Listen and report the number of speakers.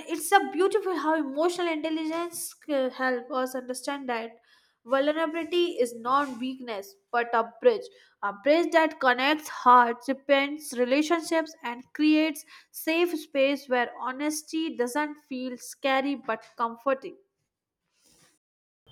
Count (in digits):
1